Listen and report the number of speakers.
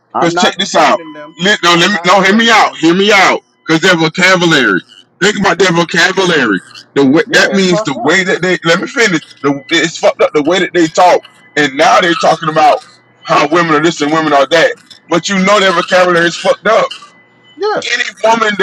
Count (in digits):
2